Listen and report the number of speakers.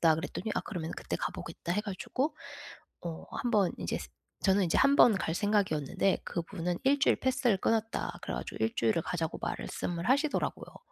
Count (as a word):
one